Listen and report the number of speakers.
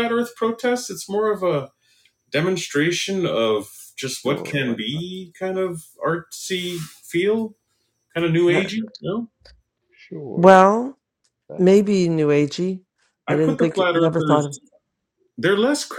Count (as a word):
three